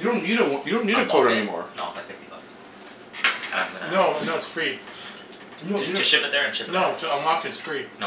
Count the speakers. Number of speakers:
three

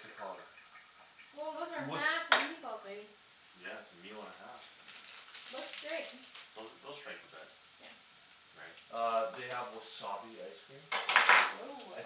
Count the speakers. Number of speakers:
three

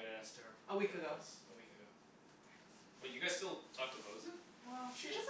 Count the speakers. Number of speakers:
three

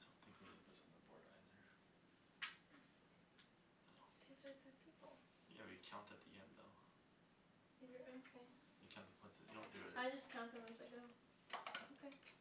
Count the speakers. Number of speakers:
two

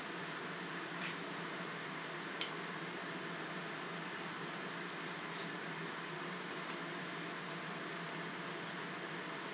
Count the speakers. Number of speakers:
zero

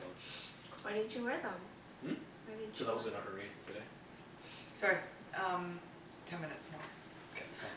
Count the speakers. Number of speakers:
three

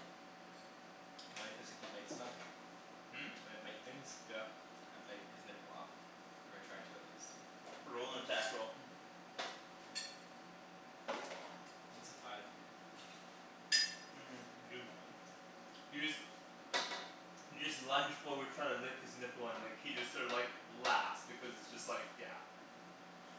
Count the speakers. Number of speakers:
two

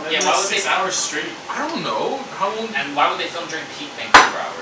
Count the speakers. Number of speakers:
three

